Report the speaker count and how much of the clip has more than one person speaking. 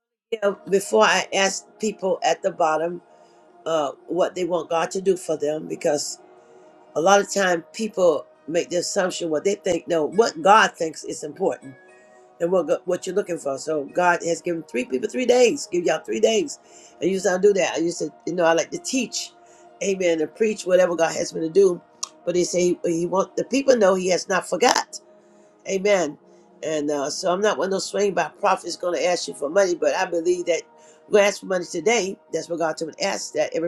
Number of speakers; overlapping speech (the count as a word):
one, no overlap